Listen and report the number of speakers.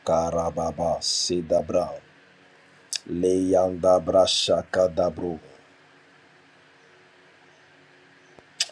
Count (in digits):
1